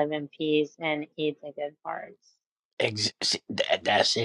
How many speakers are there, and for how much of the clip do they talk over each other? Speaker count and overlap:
two, no overlap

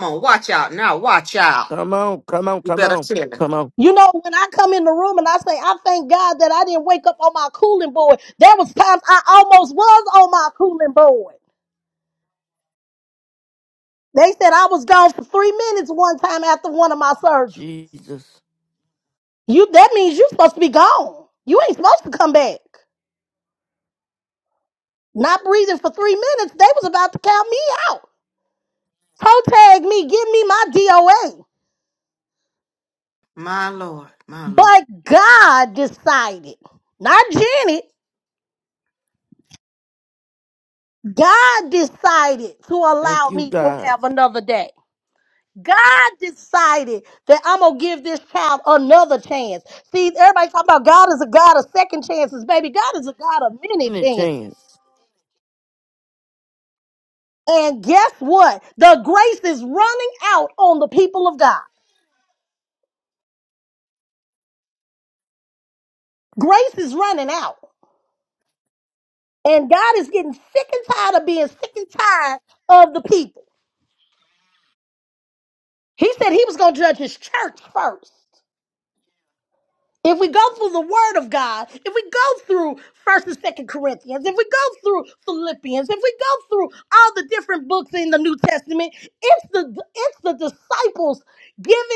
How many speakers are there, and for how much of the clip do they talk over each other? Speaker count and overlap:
three, about 2%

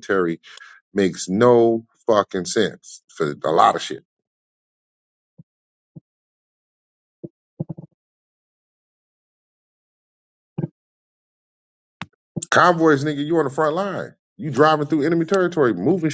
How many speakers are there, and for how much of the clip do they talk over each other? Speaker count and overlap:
one, no overlap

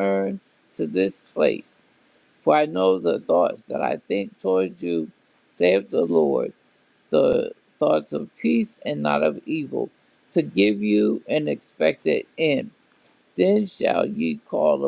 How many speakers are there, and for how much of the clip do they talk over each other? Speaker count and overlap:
one, no overlap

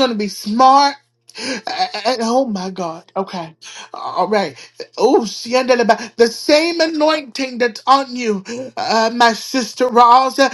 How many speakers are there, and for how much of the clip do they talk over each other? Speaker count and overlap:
one, no overlap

